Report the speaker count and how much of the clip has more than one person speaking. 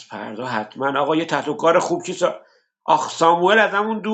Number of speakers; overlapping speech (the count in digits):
1, no overlap